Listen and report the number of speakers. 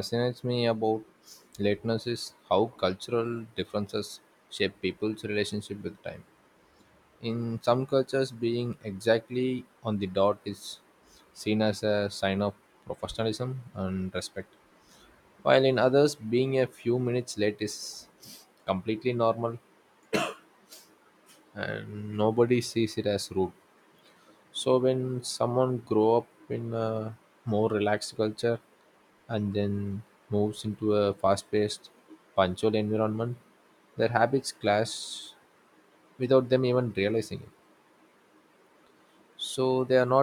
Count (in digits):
1